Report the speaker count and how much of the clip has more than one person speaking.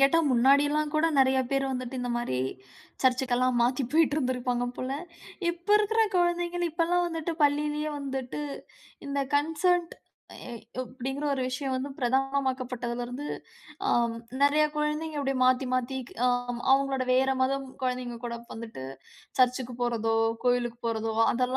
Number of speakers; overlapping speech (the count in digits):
1, no overlap